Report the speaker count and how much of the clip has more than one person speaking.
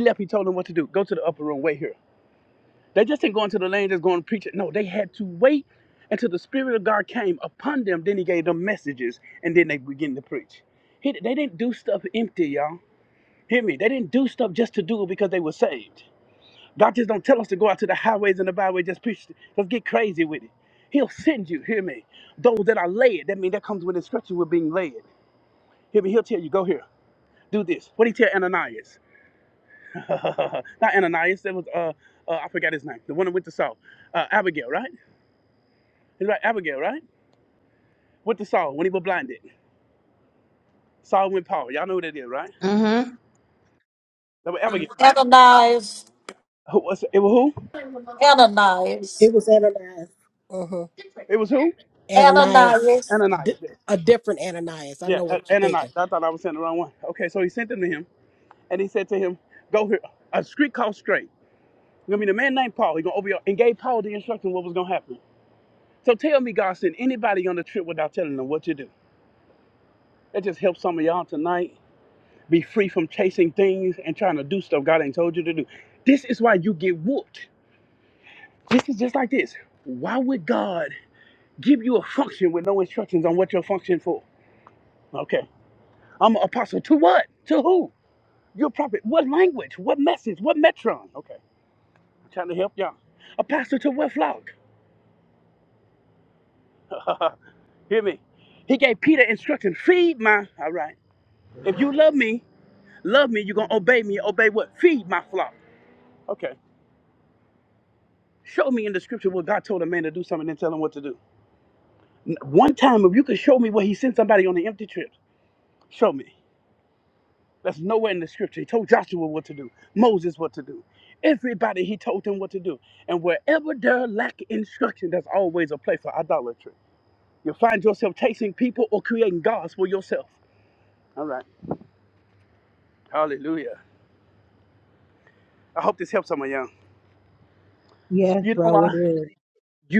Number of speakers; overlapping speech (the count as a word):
four, about 2%